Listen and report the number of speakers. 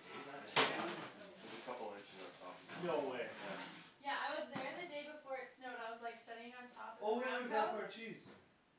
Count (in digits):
3